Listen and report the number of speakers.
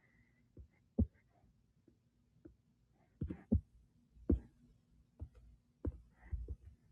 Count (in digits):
0